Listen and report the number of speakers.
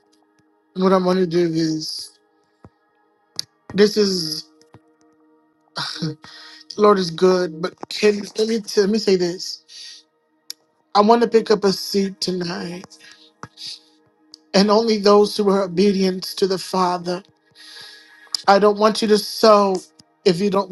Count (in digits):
1